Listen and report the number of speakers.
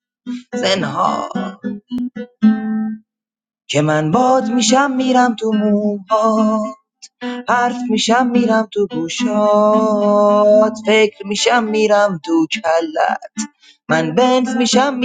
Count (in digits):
1